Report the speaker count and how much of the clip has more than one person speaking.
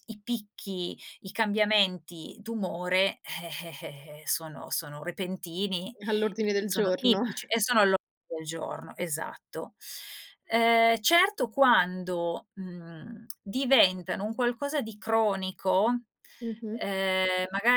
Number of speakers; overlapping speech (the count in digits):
2, about 3%